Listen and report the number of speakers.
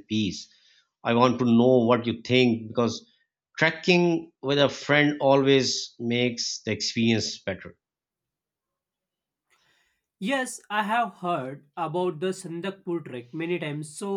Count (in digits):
2